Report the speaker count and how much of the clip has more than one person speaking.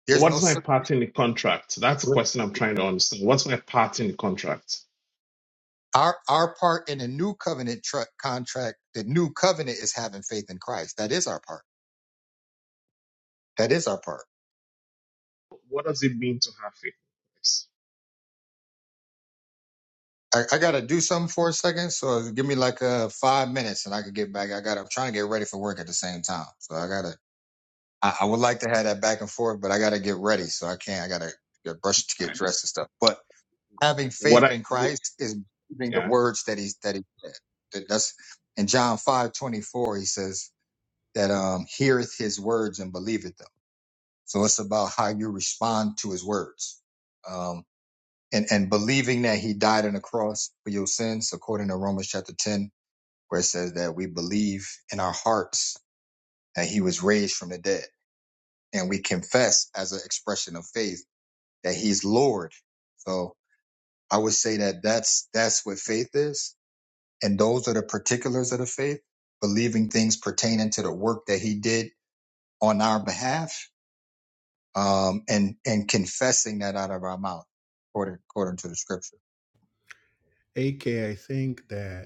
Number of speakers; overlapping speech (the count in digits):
3, about 2%